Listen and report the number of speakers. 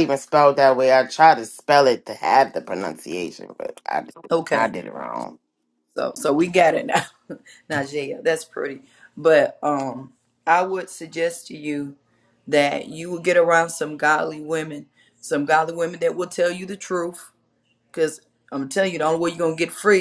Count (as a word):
two